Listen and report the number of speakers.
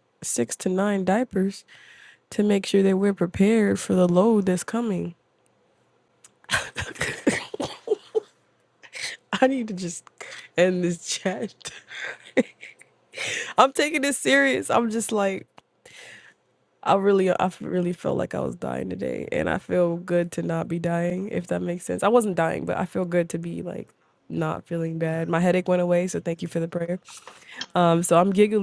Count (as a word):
one